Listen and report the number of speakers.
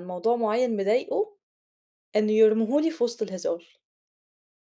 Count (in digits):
1